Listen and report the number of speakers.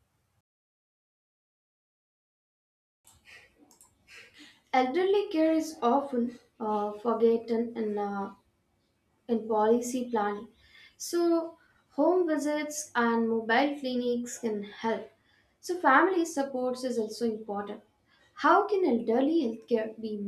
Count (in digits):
1